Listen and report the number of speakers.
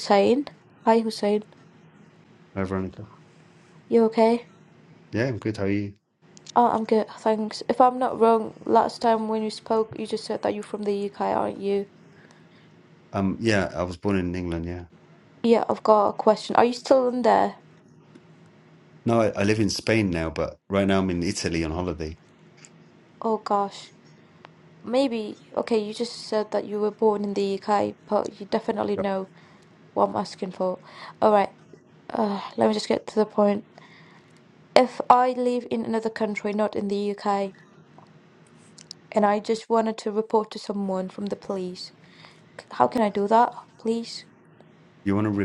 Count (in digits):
2